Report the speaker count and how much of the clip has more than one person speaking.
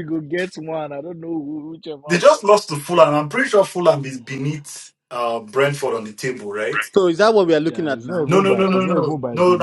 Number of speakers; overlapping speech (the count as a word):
three, about 20%